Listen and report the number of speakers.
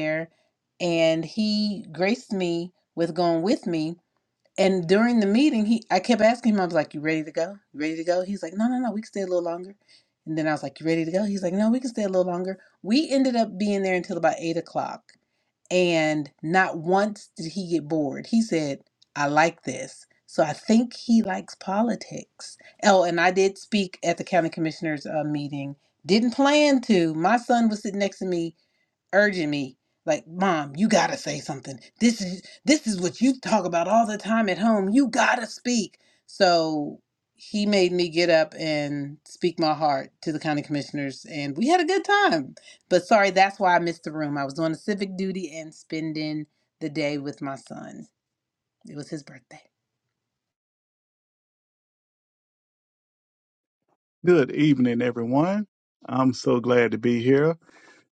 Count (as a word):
two